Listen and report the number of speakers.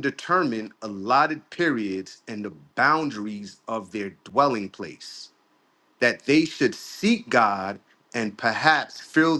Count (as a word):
one